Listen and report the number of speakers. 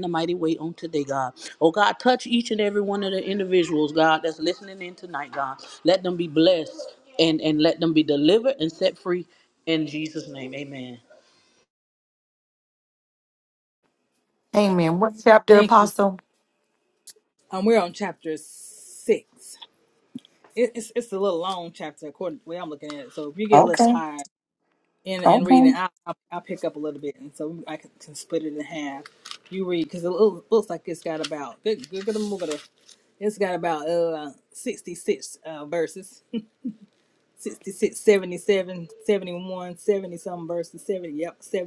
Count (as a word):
three